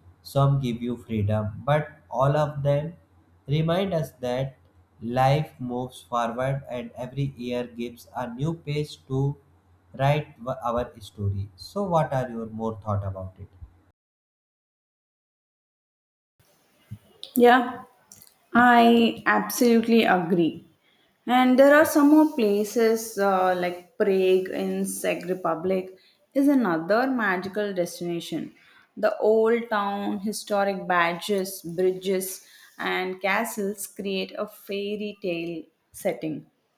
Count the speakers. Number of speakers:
2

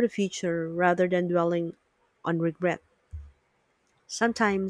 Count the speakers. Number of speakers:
1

